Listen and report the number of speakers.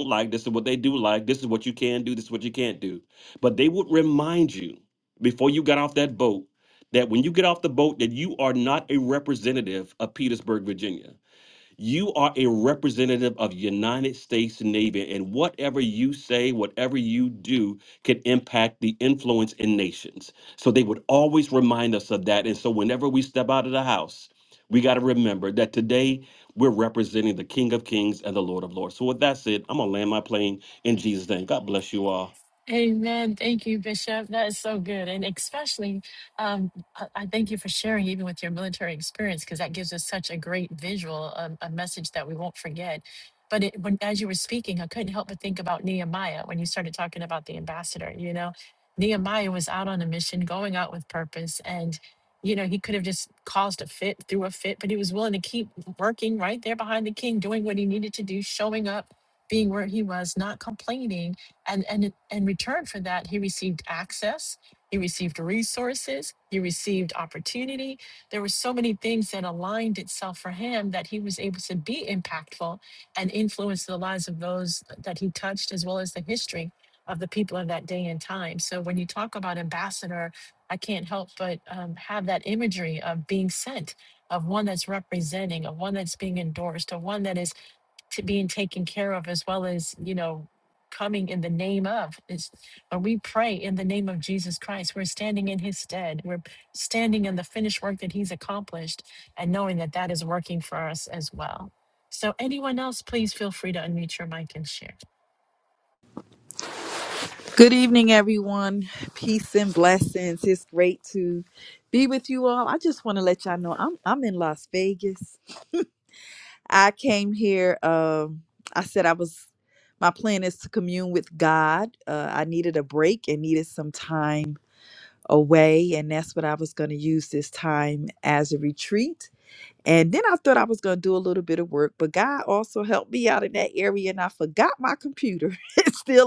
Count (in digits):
3